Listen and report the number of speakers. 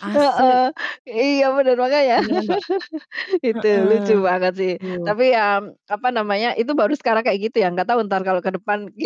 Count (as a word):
two